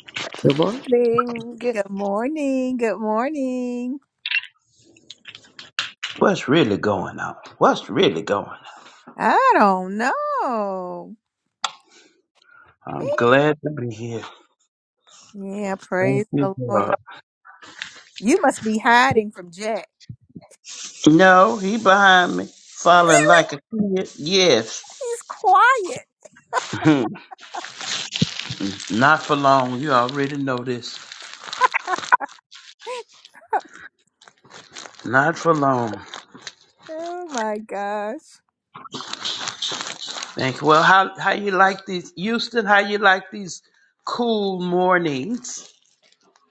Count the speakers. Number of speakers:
3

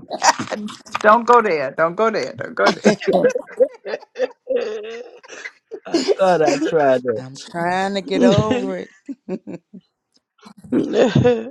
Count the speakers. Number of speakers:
3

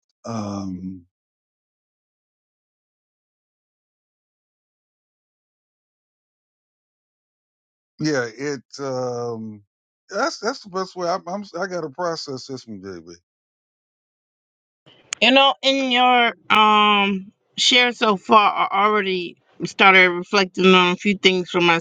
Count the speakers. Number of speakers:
2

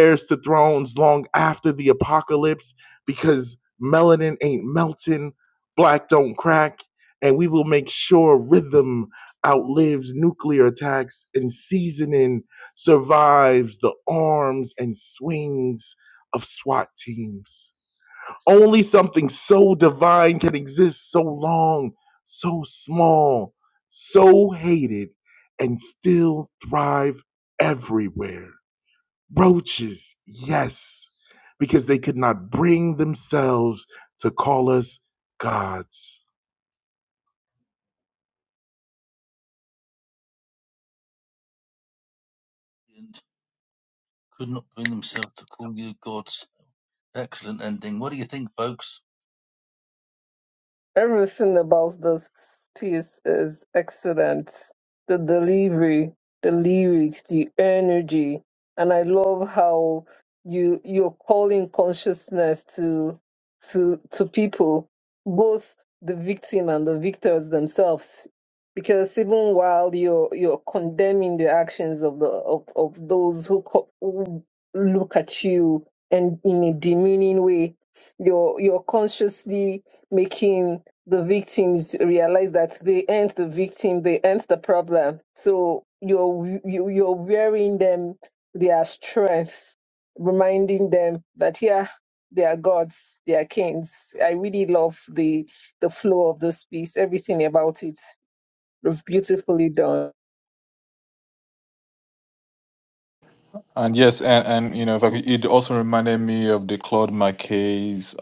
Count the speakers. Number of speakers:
4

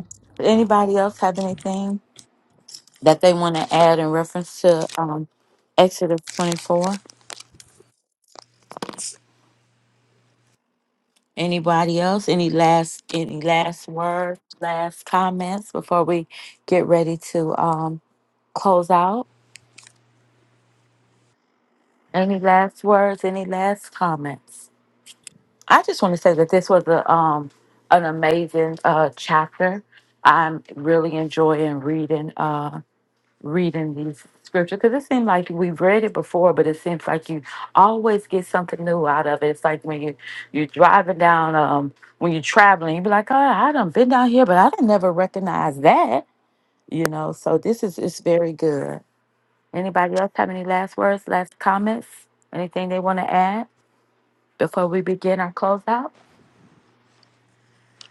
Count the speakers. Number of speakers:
1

